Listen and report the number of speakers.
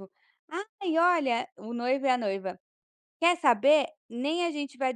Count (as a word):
one